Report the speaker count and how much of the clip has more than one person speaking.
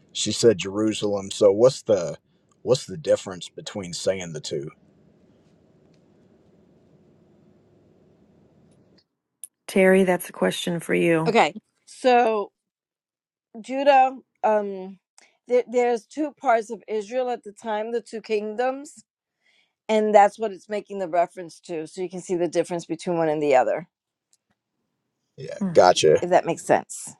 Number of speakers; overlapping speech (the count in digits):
3, about 1%